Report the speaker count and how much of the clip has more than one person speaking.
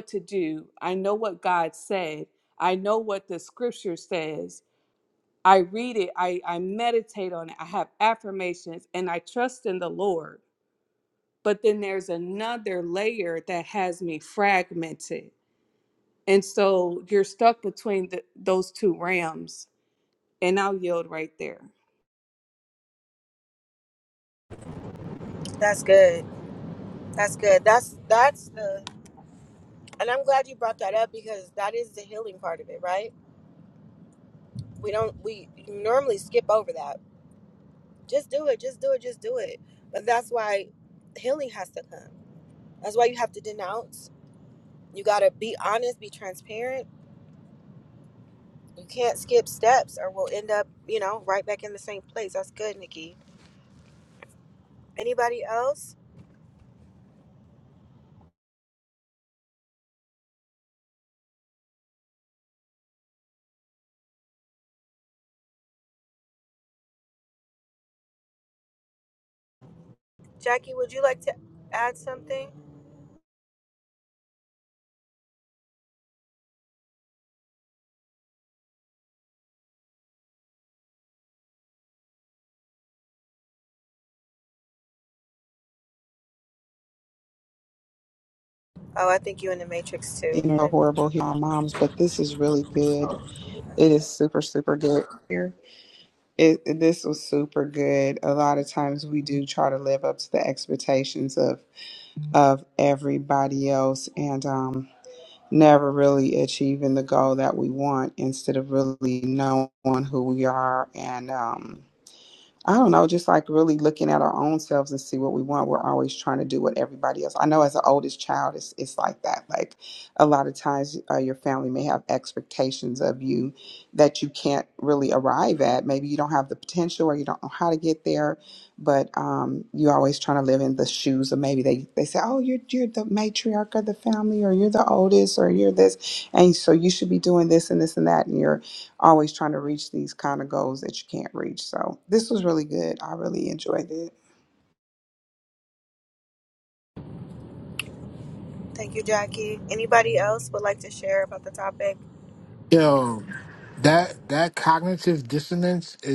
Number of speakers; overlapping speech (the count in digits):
4, under 1%